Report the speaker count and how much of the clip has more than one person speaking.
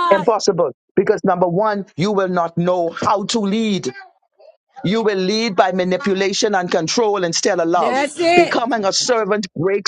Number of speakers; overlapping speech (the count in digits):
2, about 10%